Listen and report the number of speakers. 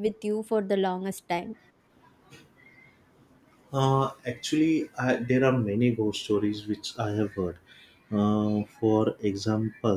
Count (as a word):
two